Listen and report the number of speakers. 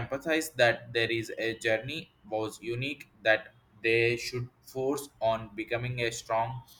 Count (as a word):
one